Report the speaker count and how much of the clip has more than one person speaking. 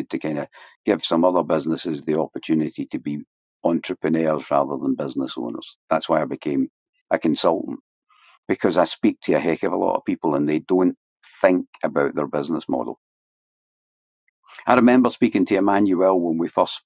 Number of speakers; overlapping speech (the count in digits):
1, no overlap